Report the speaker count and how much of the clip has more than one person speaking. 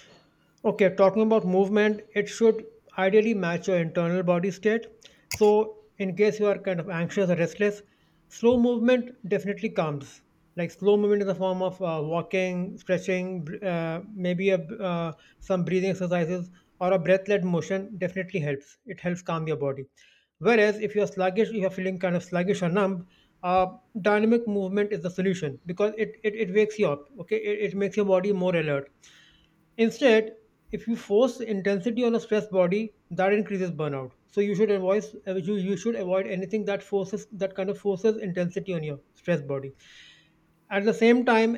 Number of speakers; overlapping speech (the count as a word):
one, no overlap